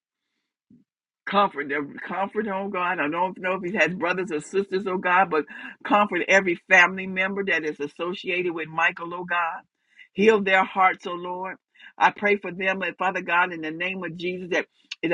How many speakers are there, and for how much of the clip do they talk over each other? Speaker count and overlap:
1, no overlap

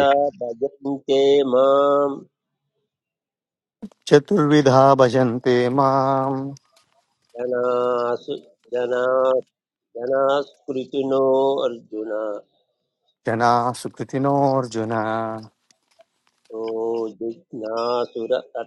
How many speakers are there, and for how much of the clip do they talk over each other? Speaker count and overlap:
2, no overlap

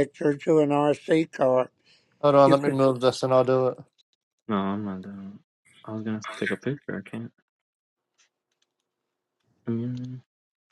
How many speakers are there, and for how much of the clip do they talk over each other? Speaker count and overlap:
3, about 2%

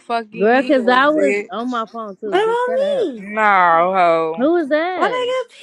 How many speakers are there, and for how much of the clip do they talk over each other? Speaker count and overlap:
3, about 41%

